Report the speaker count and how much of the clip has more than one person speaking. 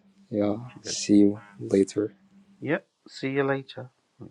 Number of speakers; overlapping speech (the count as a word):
two, about 17%